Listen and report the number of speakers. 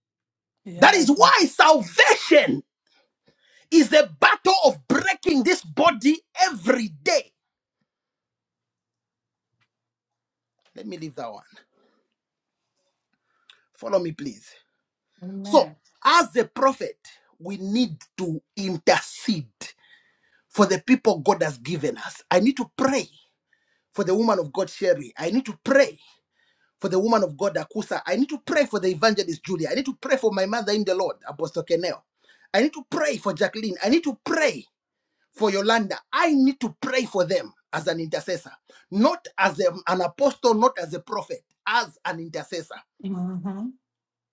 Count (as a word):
two